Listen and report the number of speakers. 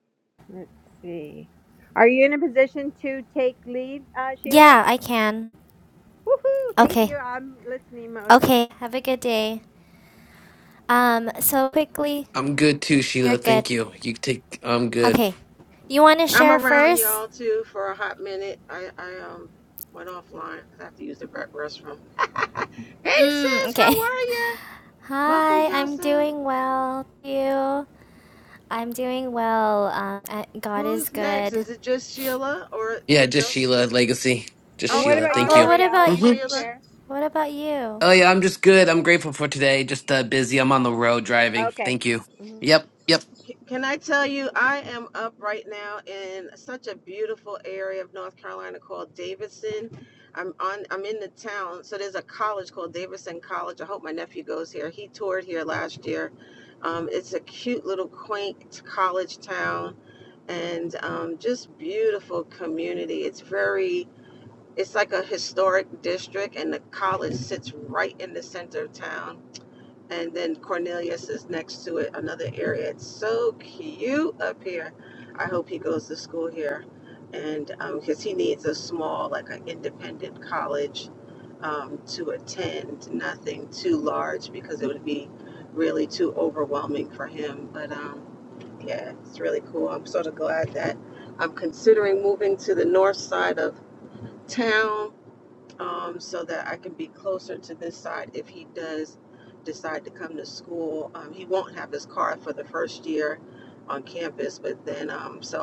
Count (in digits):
4